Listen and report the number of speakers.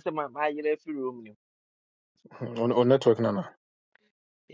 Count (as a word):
two